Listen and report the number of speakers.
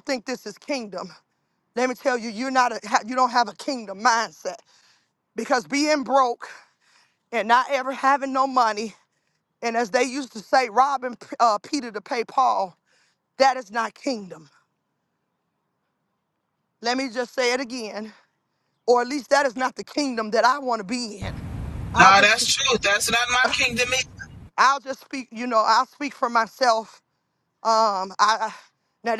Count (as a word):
two